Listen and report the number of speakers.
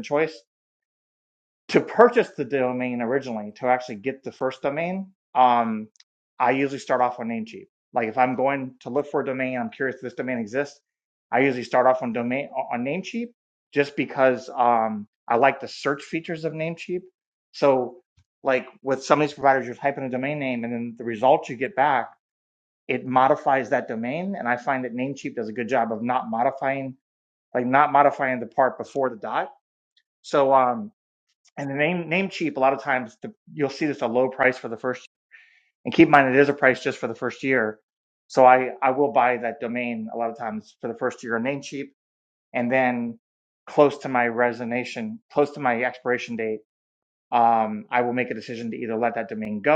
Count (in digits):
1